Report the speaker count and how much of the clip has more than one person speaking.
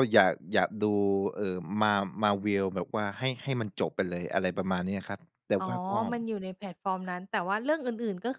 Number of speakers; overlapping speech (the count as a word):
two, about 2%